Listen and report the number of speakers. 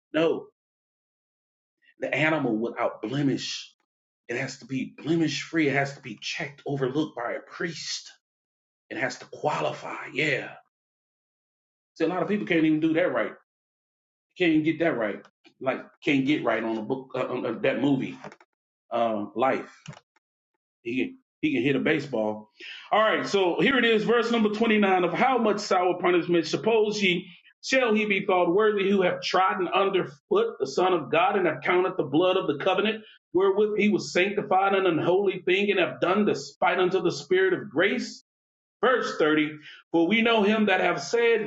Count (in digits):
1